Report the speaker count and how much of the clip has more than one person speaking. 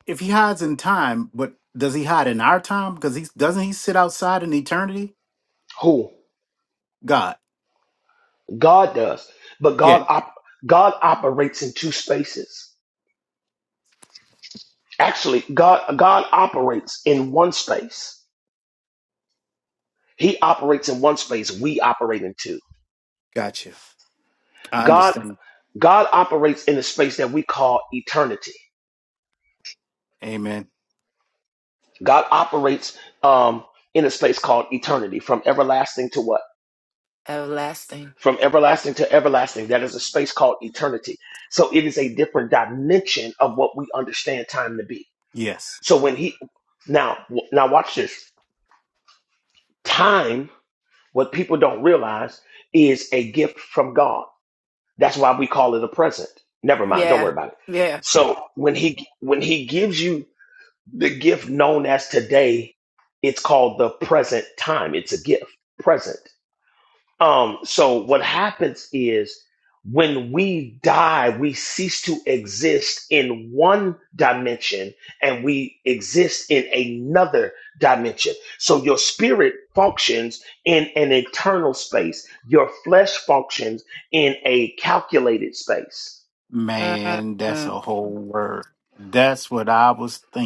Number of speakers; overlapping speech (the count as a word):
three, about 2%